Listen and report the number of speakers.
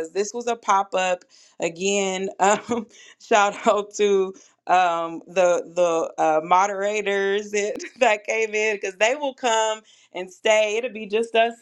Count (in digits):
1